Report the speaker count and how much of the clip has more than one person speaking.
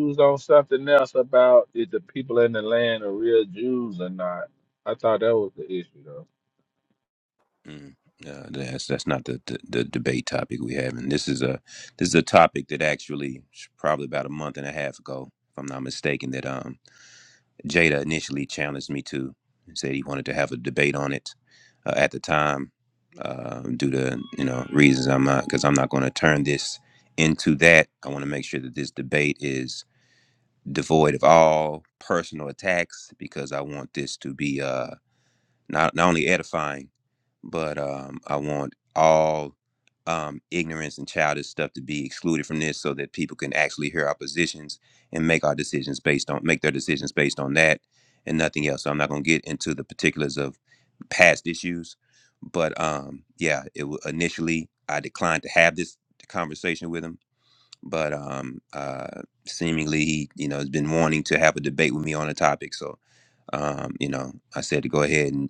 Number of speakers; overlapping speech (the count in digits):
2, no overlap